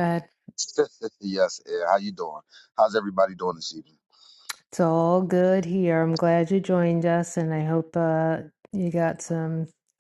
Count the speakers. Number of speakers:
2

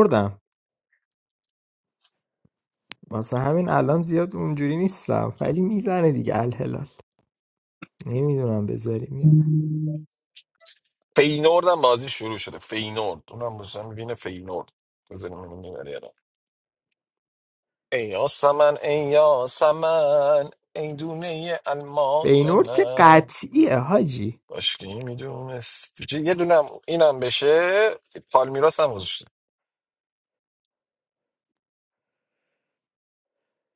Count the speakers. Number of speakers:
2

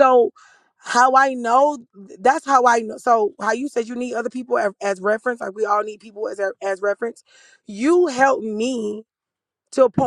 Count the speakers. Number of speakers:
1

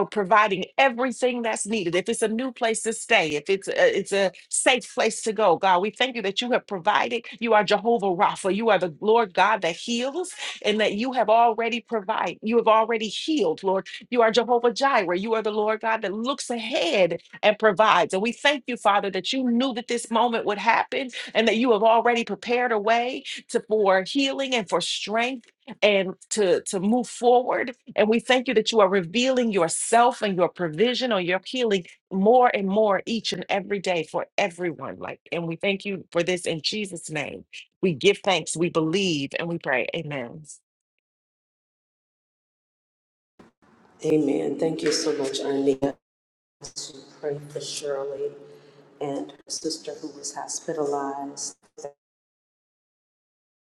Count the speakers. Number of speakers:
2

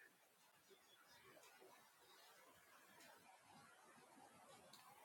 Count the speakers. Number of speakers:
0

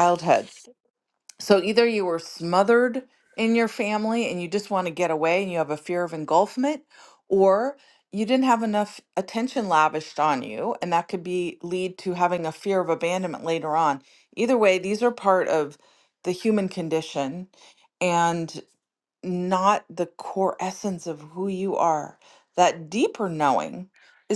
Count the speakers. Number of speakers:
1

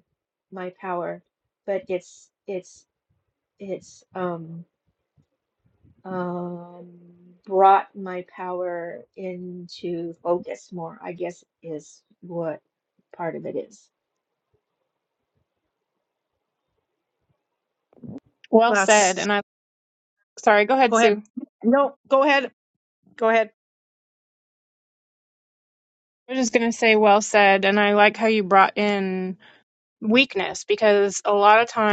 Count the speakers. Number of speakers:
3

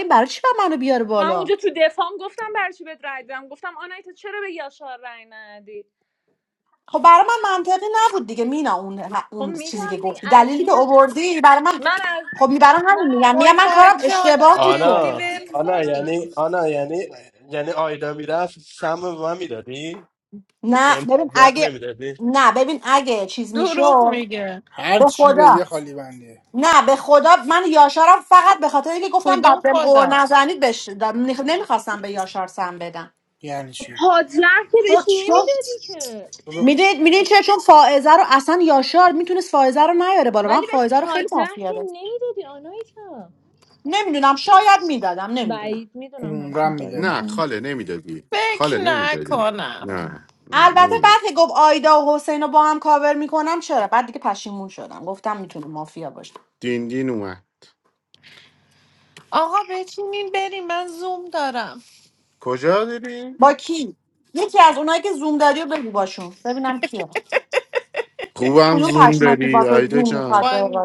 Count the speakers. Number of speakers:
6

